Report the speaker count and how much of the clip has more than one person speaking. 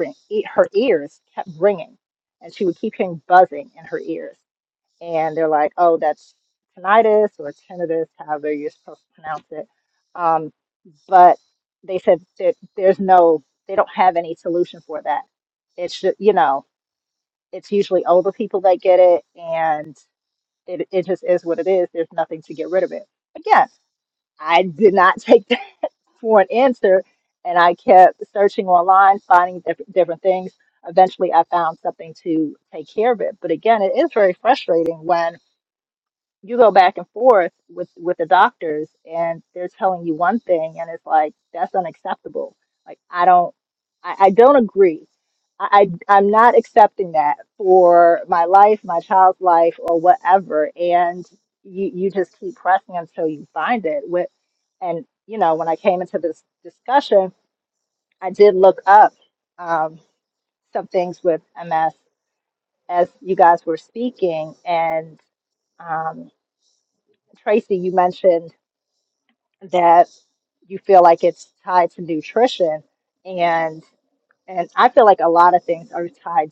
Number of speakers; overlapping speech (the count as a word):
one, no overlap